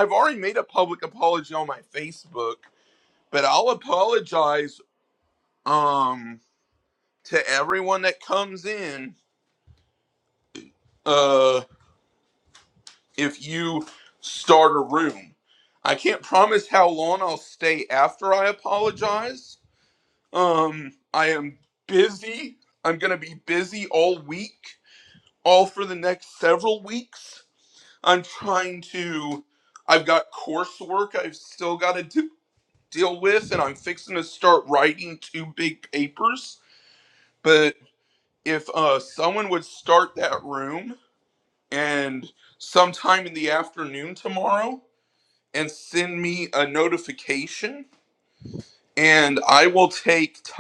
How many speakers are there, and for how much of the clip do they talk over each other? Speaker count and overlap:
1, no overlap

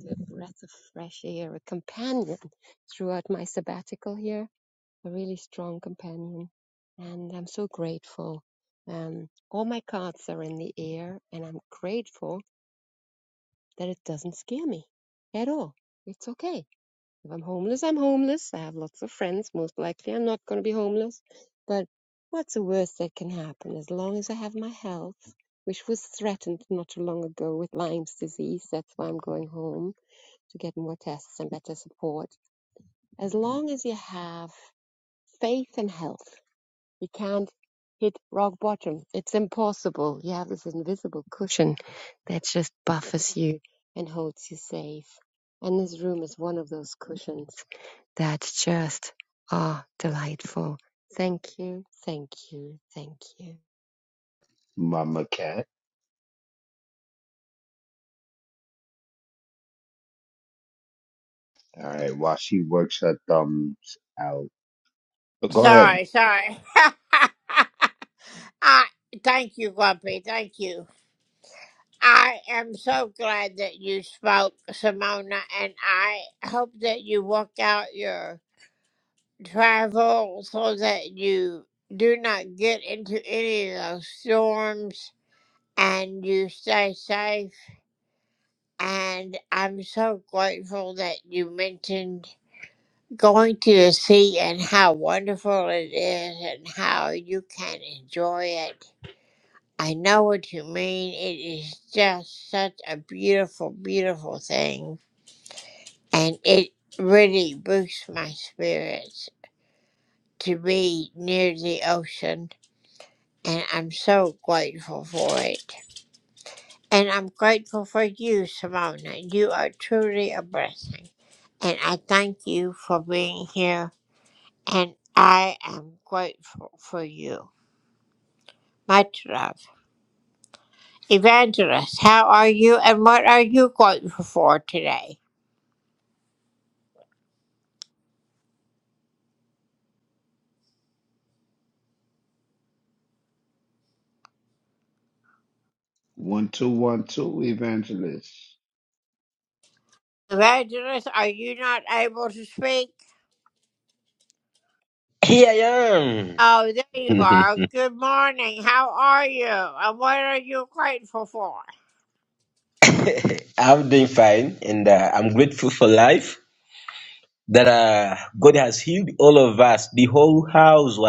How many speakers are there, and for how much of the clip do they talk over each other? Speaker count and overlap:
4, under 1%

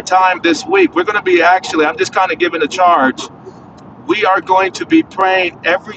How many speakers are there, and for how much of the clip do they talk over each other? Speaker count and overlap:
1, no overlap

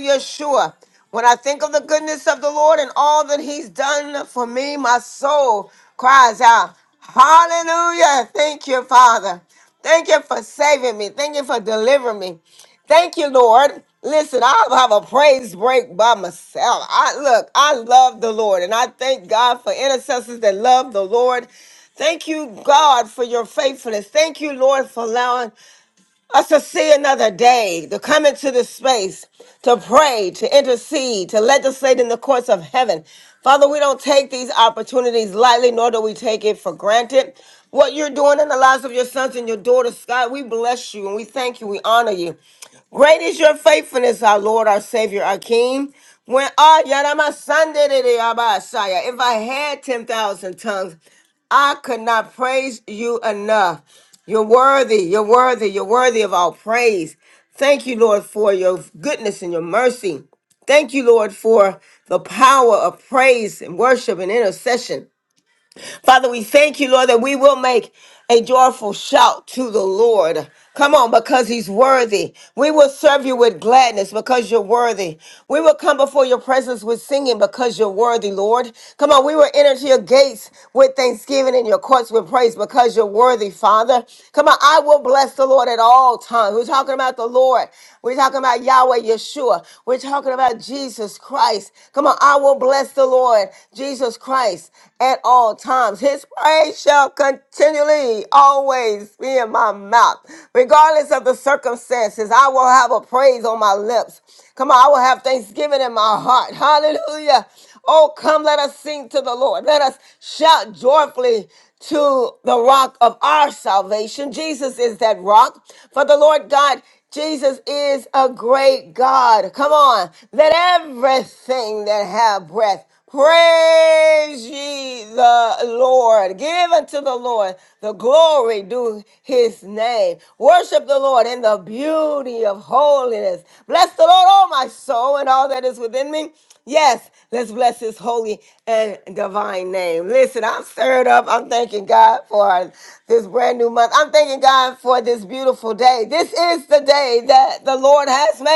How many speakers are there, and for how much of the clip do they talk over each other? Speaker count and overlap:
1, no overlap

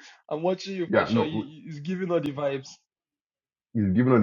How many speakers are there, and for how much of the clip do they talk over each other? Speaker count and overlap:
2, about 13%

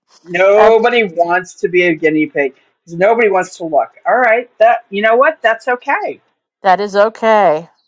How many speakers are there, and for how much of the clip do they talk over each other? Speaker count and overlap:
2, about 2%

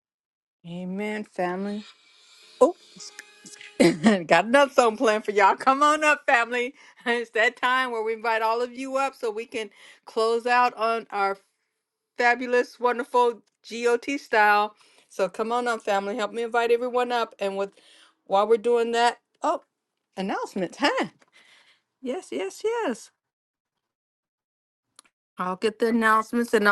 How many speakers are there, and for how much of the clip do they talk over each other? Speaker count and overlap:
1, no overlap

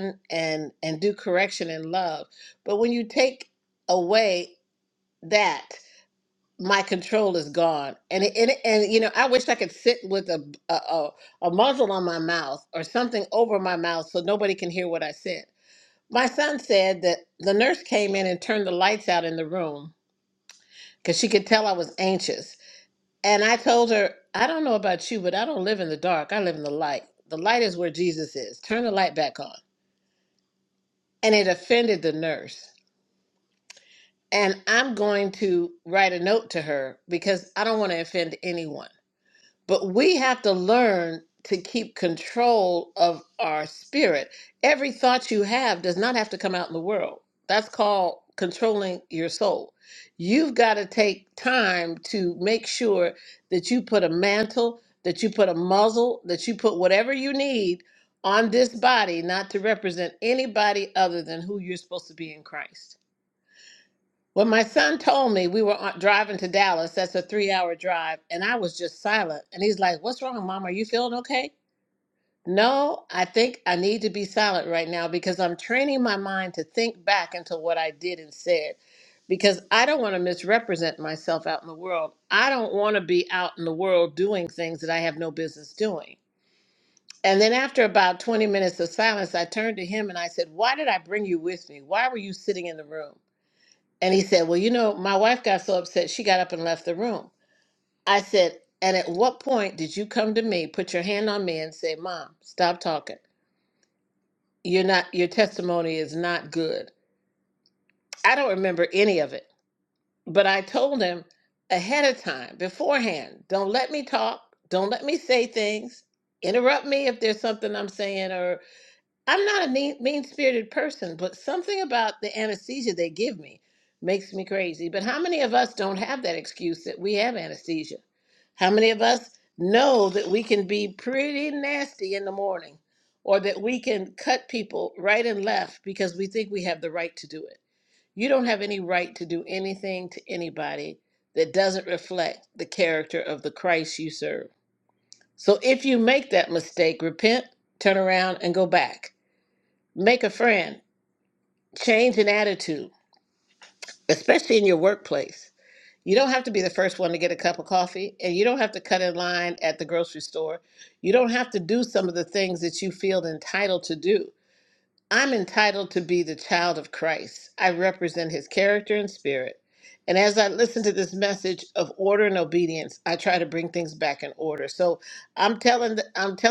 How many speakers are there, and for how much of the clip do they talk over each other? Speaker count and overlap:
1, no overlap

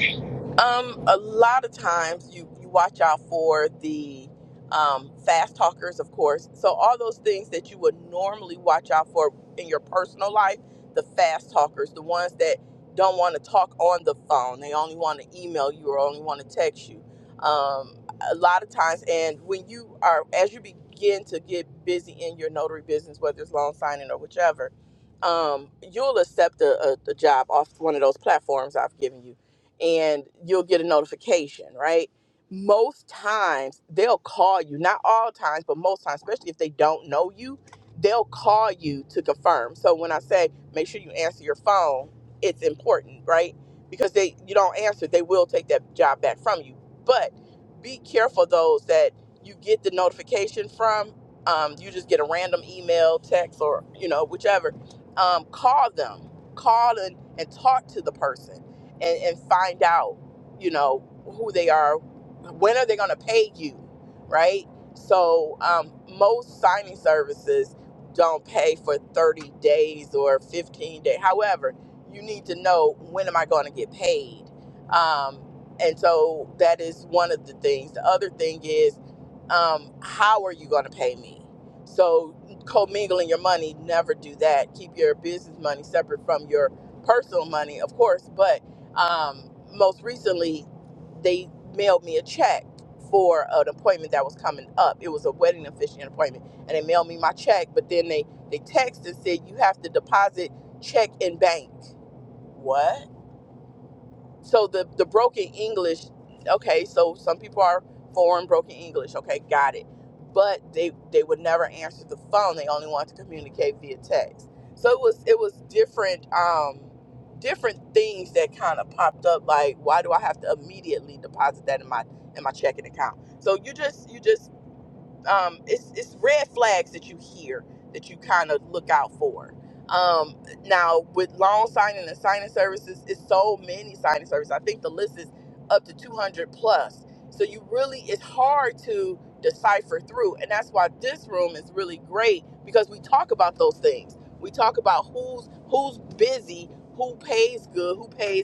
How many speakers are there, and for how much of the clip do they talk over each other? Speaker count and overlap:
1, no overlap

